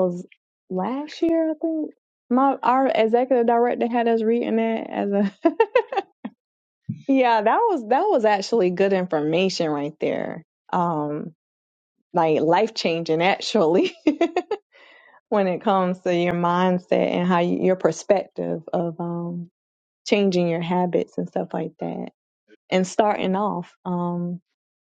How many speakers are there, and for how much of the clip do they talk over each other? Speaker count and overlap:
one, no overlap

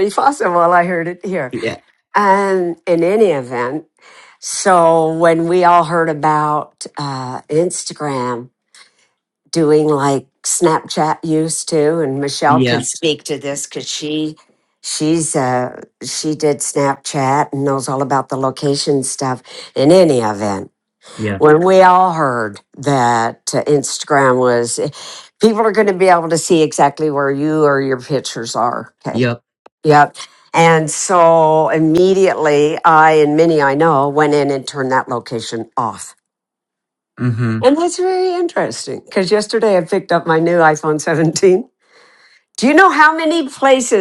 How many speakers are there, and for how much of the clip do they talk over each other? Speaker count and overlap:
two, about 1%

